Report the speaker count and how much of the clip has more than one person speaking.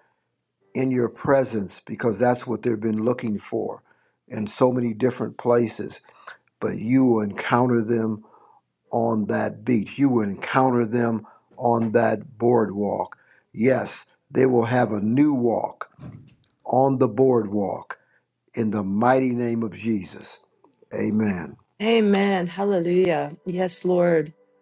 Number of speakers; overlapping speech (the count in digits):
2, no overlap